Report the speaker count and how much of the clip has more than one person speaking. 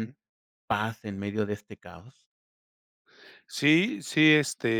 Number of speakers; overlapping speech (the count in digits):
2, about 2%